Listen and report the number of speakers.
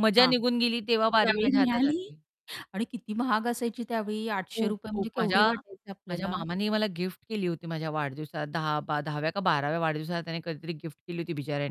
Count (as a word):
two